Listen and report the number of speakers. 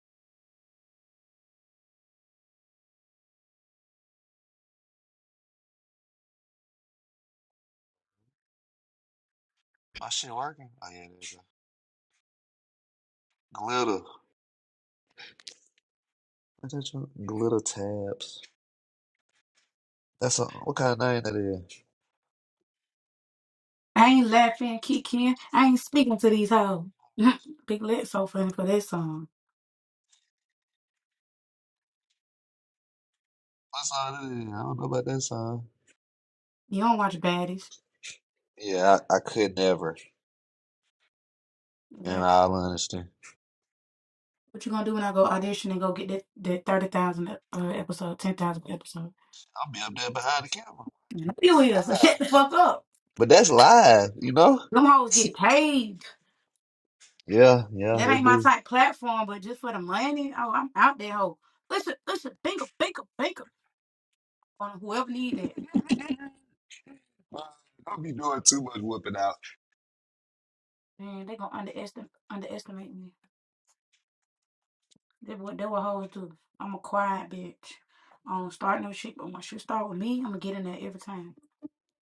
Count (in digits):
2